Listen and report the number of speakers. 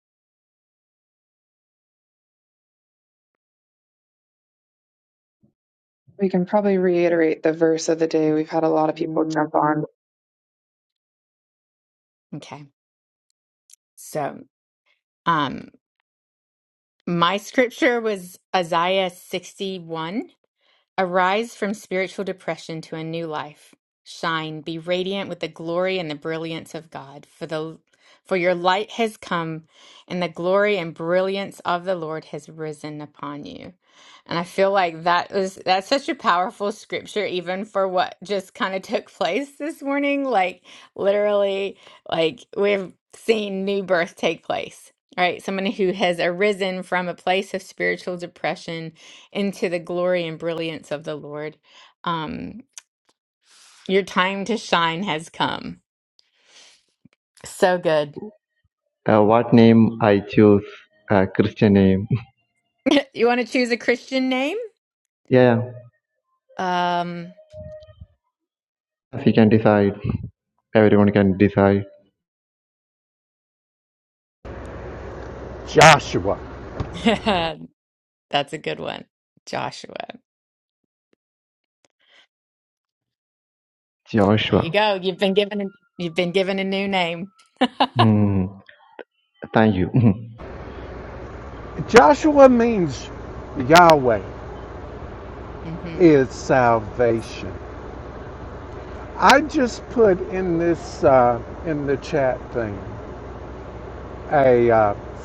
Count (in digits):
4